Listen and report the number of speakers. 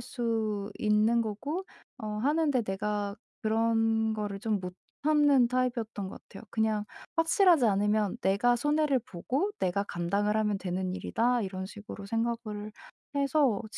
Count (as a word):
one